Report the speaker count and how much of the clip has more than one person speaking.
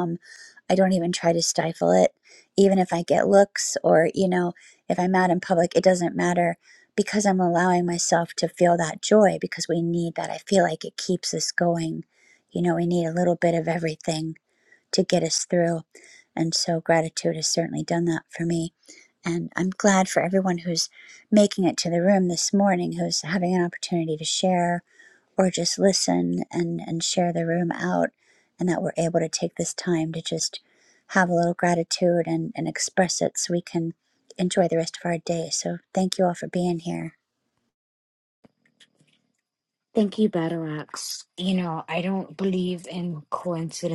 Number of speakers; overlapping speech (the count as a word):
two, no overlap